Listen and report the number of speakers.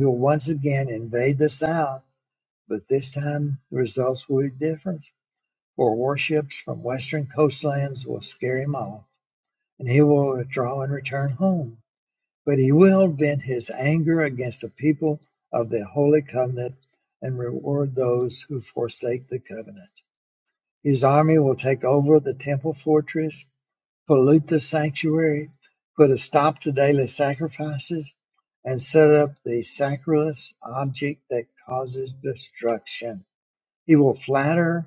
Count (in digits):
1